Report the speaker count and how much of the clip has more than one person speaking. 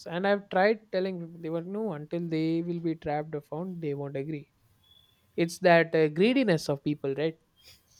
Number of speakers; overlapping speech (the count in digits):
1, no overlap